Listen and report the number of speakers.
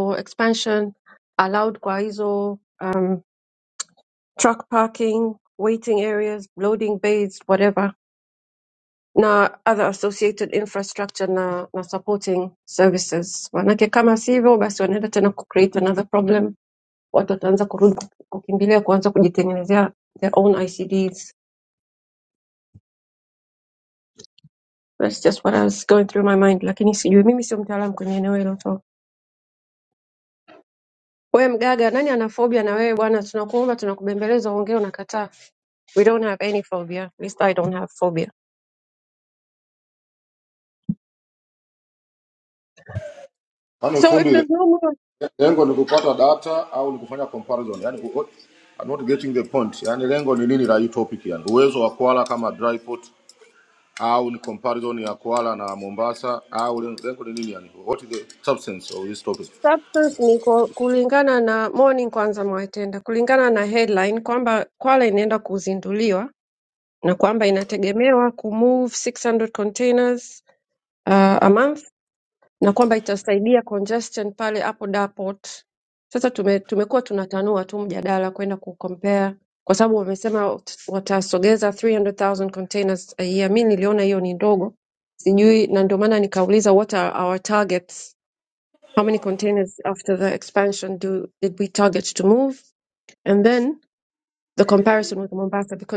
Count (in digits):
2